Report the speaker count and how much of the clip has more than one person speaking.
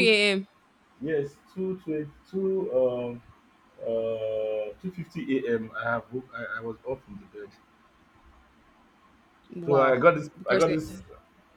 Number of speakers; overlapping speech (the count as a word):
two, about 7%